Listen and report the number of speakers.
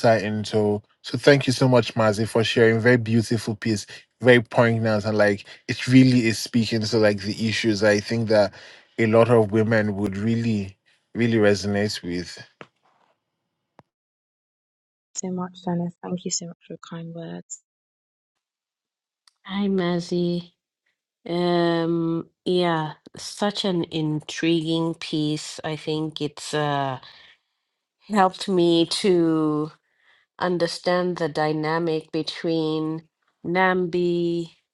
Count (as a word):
three